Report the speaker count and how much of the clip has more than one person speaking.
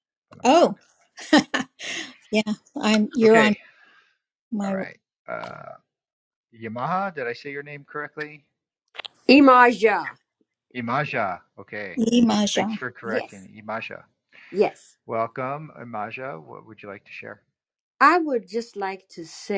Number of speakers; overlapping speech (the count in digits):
3, about 7%